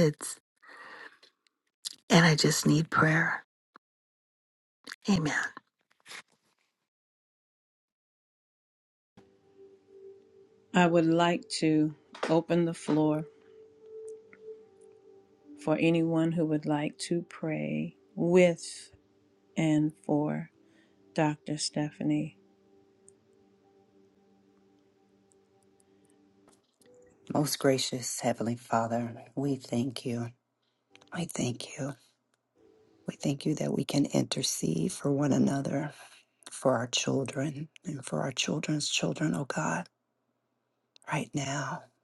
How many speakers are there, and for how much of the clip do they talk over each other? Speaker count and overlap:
3, no overlap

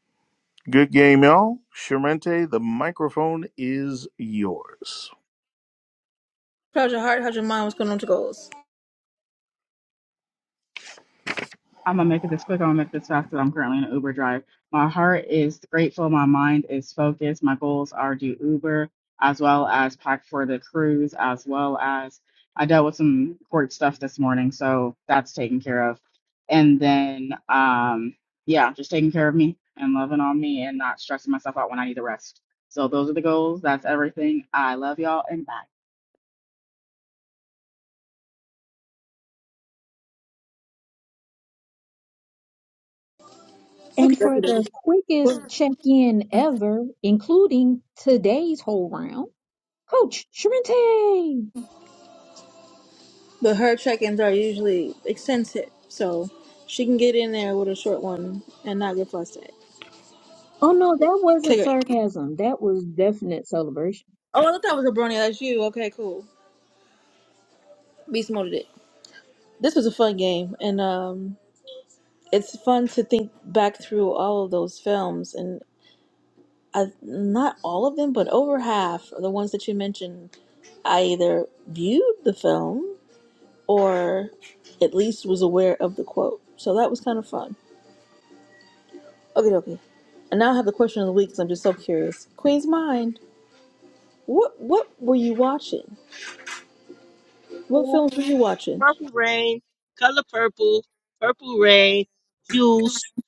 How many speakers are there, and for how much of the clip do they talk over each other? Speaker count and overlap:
5, about 2%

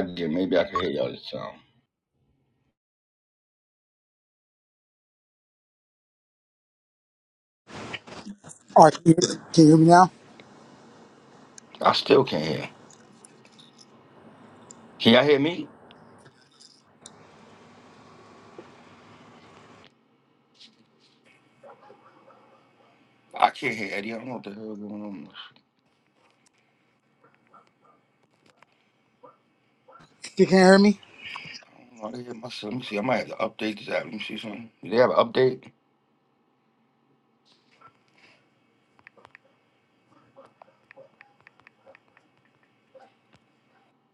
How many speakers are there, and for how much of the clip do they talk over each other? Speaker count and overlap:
2, no overlap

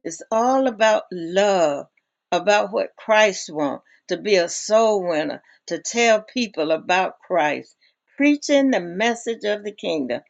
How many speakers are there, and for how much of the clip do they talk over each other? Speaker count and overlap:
1, no overlap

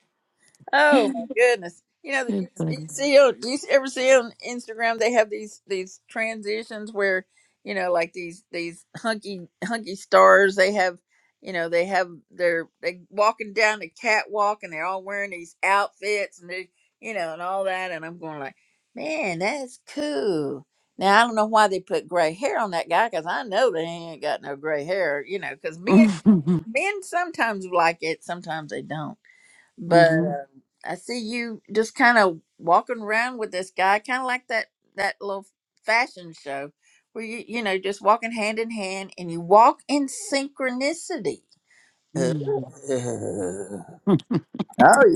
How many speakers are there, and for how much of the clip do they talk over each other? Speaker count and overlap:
2, about 2%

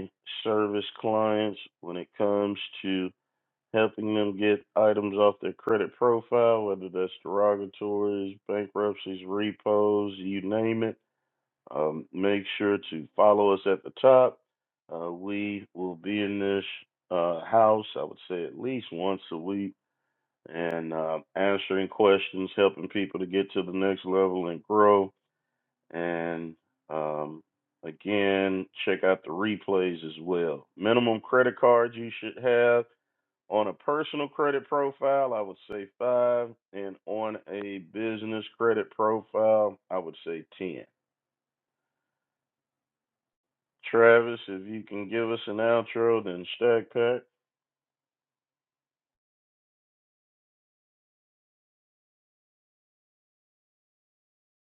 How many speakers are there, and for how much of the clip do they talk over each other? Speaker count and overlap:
1, no overlap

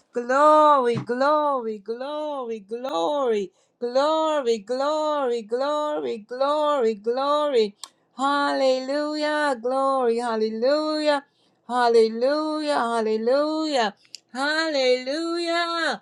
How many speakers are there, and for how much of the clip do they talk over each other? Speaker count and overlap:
1, no overlap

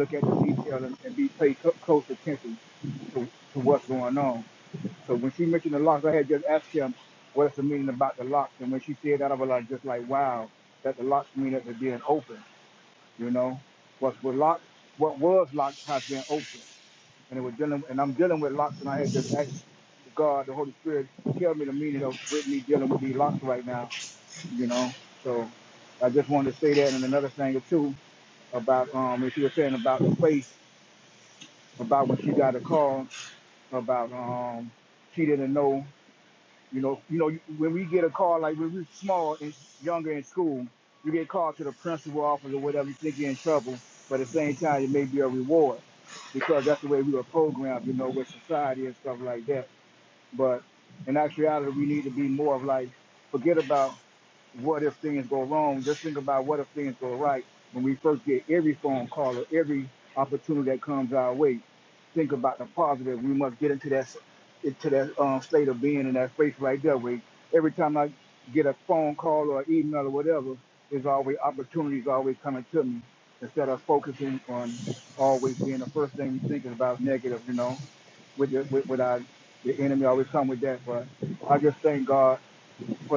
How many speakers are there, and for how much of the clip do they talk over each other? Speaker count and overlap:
1, no overlap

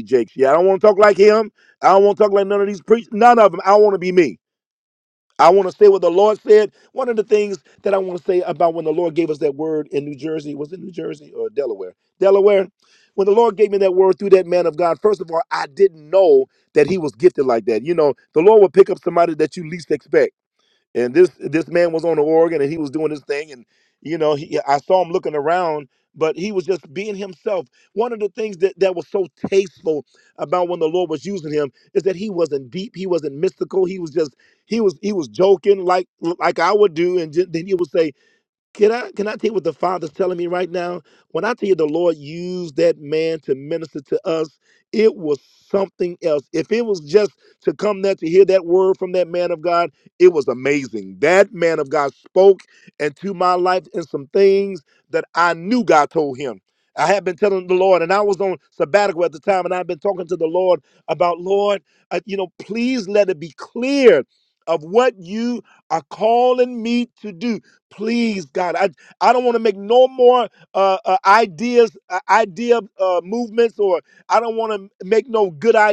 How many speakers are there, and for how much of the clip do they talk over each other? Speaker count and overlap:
1, no overlap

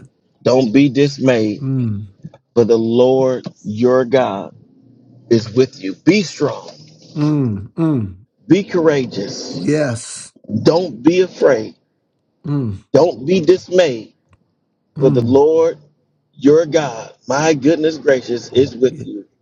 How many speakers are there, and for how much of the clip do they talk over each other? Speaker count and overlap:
2, about 4%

